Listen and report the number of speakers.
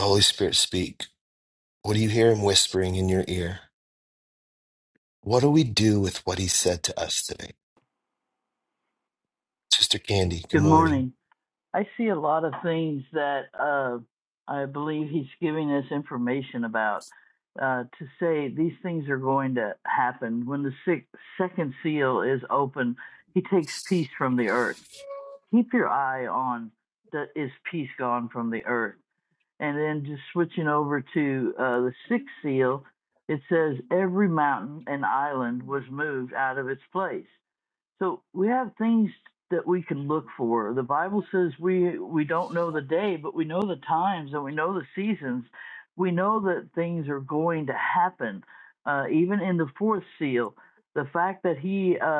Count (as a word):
two